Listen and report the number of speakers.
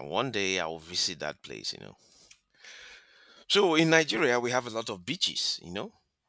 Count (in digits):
1